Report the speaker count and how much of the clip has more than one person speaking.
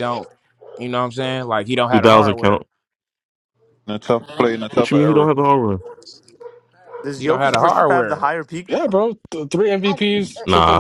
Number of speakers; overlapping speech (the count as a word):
five, about 26%